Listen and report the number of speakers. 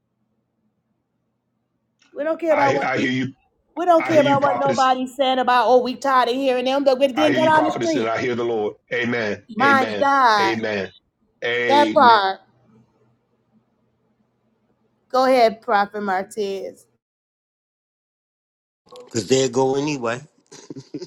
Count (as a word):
three